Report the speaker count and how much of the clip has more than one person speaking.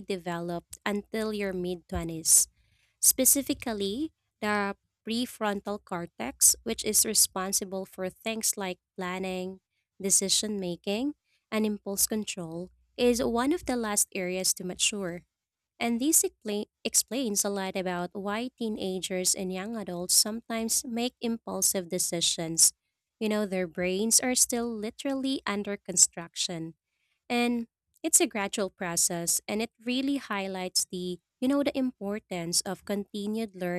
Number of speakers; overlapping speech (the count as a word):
one, no overlap